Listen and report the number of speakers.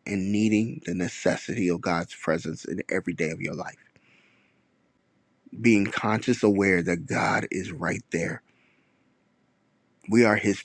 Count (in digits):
1